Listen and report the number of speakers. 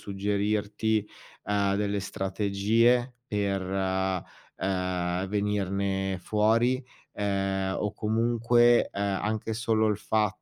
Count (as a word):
one